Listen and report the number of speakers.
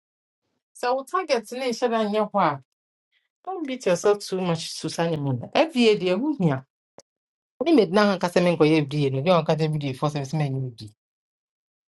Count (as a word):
one